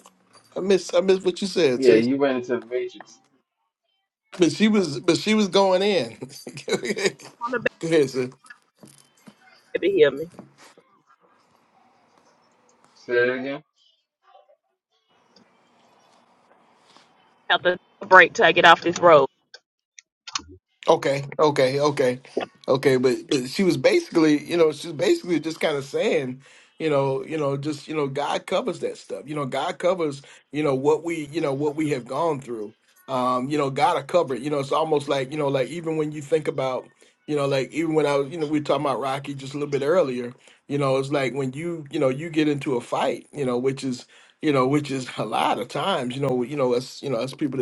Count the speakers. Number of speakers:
three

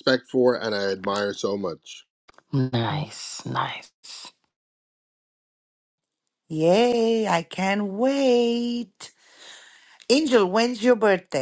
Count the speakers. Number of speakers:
three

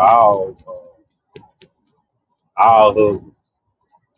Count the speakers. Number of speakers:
one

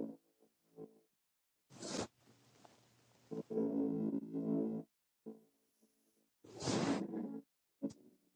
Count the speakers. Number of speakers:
zero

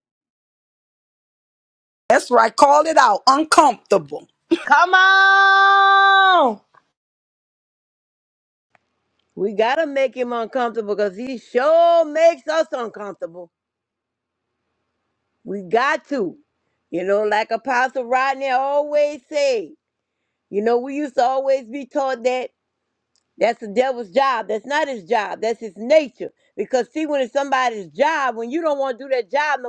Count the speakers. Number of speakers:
three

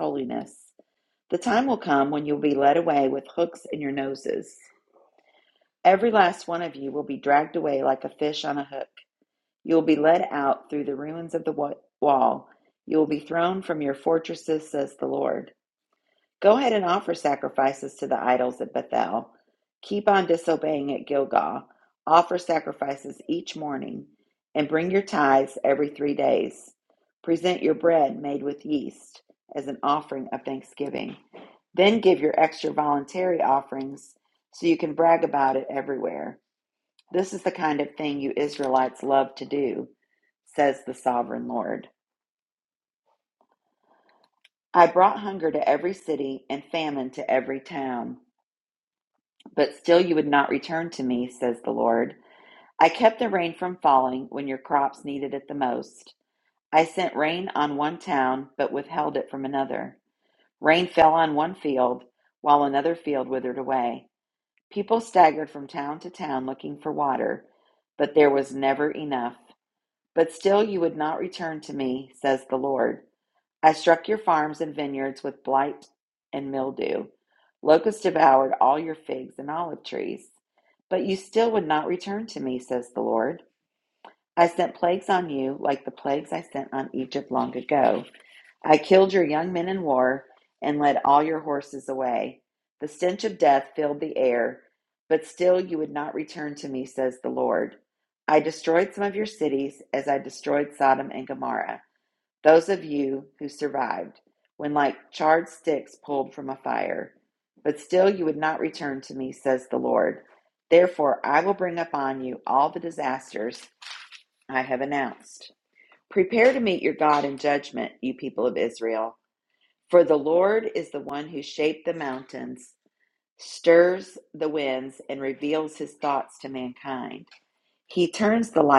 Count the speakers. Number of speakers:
one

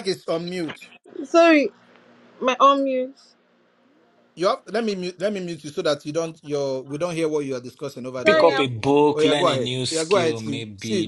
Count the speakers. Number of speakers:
three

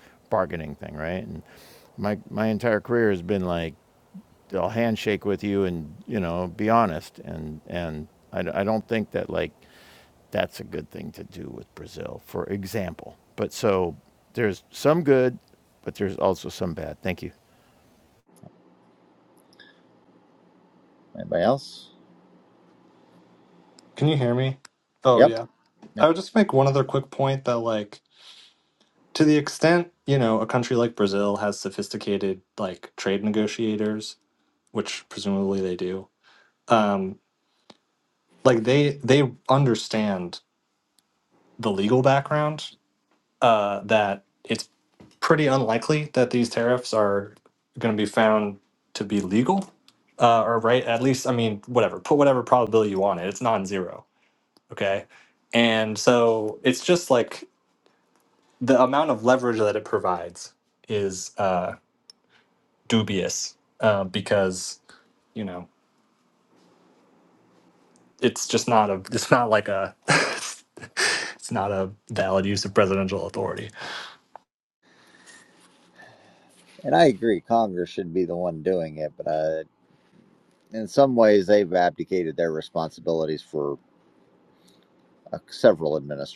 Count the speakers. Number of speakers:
three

